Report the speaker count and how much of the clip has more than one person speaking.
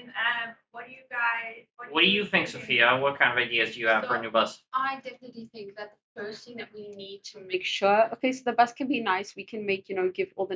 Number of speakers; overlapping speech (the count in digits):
3, about 13%